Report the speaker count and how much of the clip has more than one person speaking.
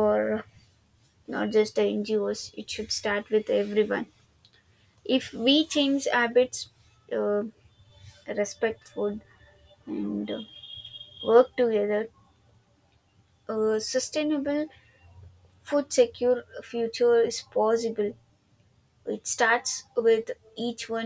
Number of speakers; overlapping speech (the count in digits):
1, no overlap